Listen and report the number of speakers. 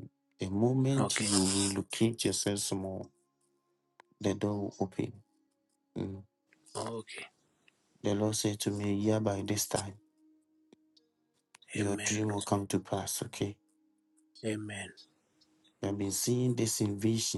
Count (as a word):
two